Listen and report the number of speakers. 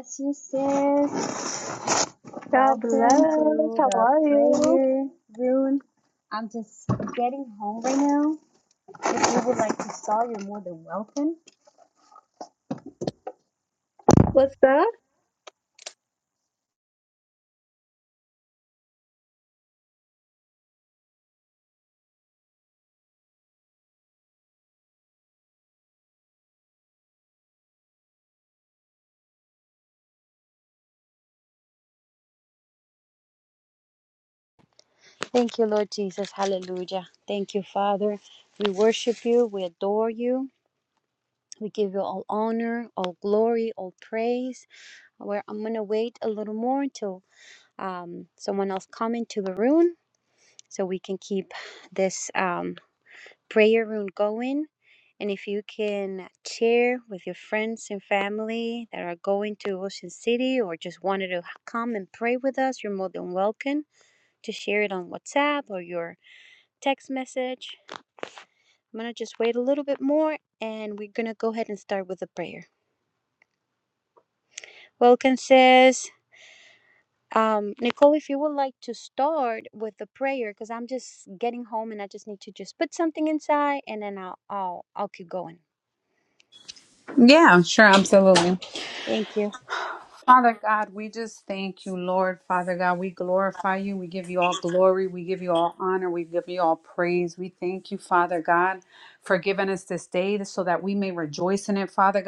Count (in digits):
3